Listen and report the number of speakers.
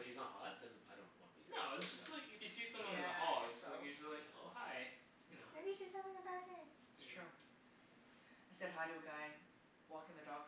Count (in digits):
4